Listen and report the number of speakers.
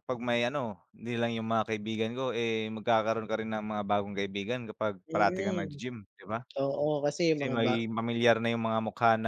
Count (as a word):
two